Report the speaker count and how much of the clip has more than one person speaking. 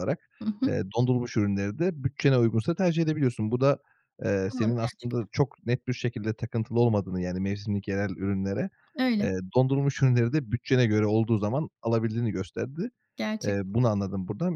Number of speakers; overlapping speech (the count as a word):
two, about 8%